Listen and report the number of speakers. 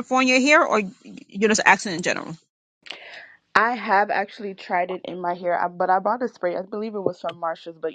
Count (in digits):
2